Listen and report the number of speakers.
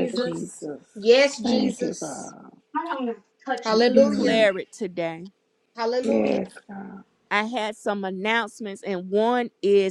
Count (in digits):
4